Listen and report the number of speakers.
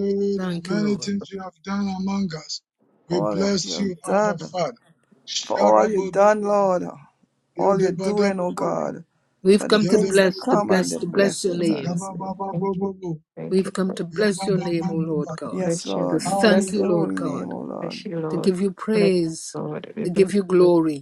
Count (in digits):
4